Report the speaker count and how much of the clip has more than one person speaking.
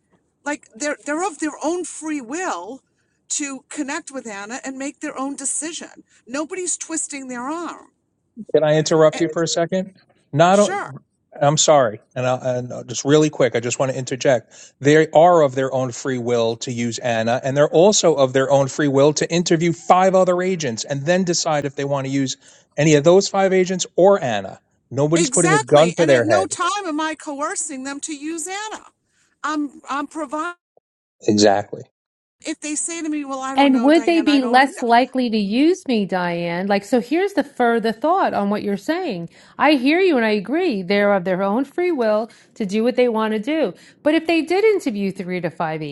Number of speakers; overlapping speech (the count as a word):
three, about 6%